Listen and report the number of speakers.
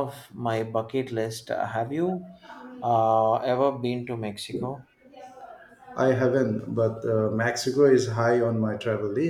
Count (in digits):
2